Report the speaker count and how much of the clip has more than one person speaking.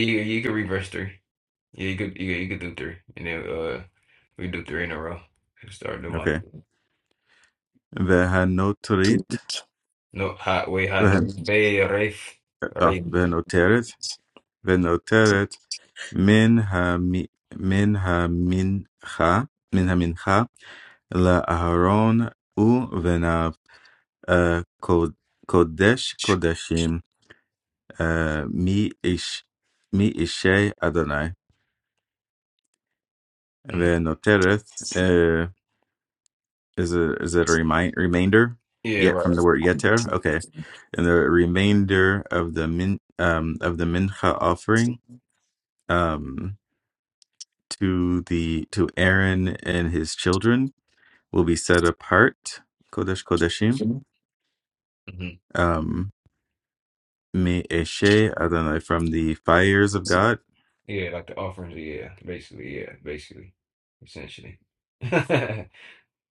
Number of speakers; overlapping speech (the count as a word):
two, about 2%